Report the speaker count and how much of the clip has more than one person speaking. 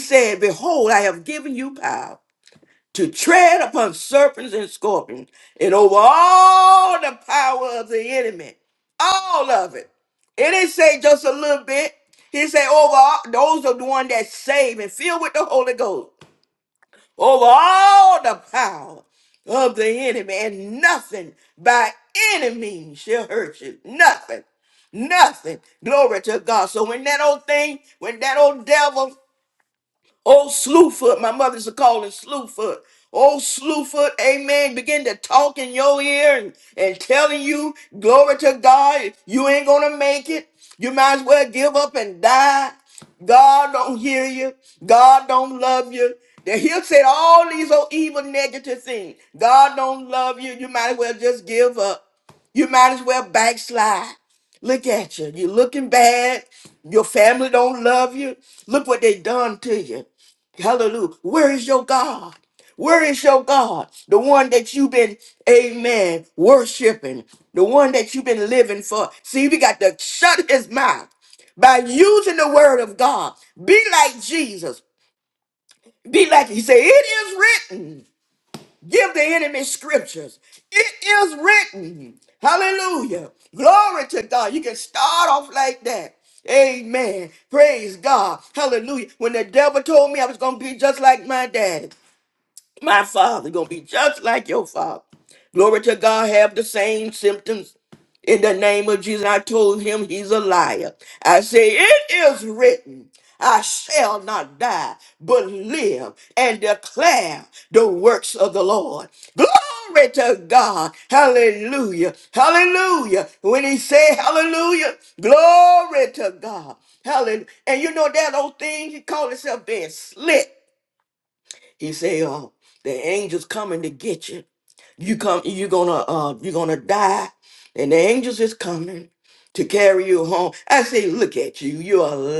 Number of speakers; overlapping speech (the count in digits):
1, no overlap